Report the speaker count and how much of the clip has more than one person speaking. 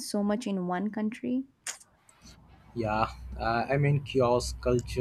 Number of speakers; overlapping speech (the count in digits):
2, no overlap